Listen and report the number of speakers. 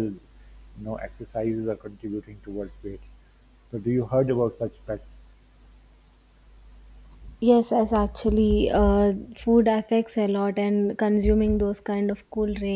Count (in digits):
2